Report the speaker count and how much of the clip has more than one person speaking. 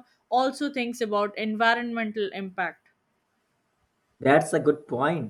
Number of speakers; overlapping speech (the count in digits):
2, no overlap